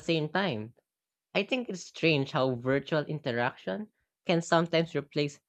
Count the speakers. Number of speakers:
one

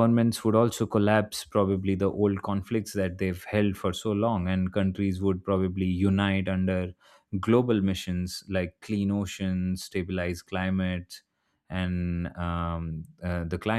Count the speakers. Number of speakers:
one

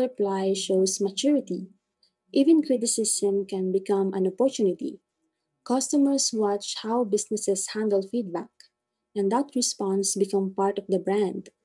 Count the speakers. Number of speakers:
one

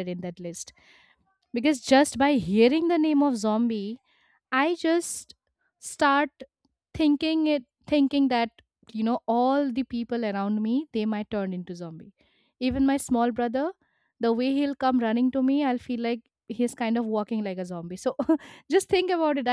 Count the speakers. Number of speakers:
one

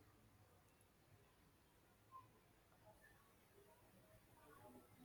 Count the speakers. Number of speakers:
zero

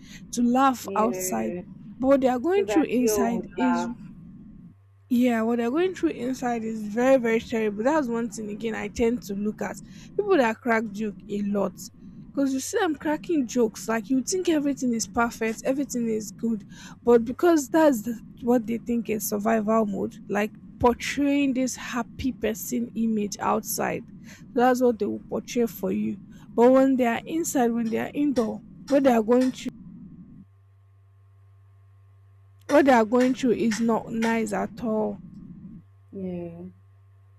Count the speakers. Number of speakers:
two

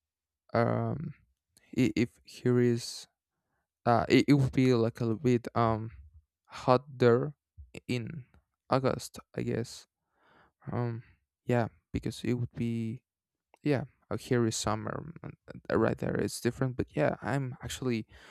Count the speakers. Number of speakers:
one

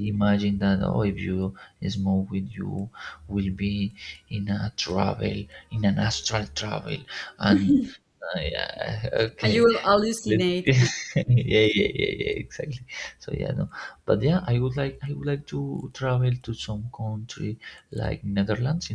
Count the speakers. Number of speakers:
two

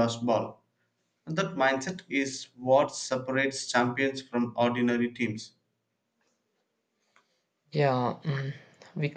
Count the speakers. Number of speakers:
two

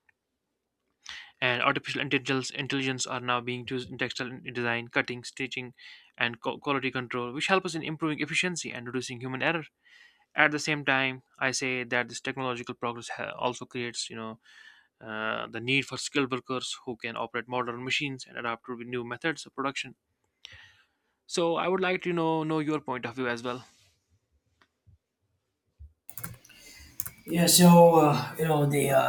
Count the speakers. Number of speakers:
two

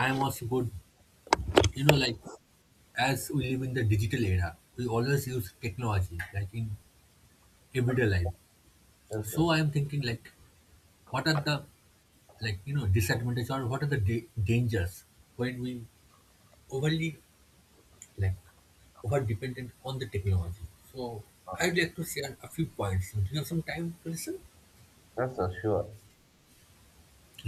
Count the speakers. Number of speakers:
two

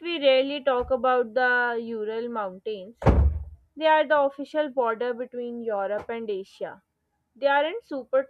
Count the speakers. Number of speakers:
one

